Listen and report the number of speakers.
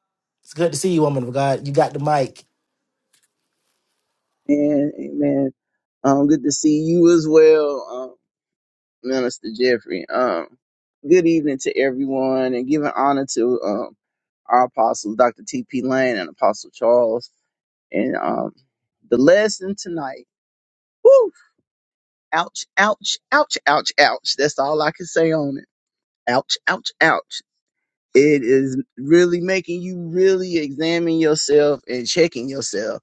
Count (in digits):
2